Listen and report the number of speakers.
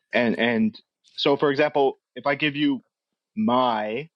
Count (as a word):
one